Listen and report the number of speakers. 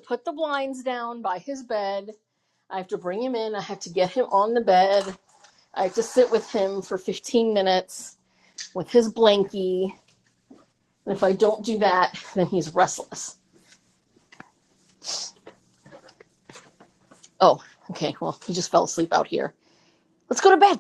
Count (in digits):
1